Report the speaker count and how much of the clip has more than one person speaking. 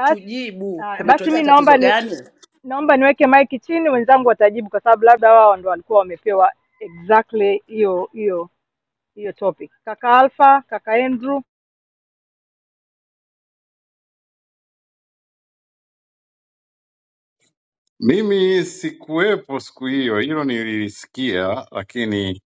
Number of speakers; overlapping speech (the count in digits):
3, about 6%